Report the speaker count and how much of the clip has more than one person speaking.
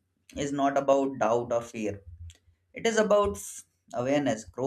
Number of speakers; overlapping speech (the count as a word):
one, no overlap